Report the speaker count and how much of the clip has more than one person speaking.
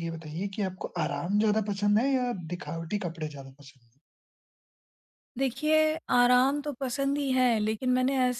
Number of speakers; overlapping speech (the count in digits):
2, no overlap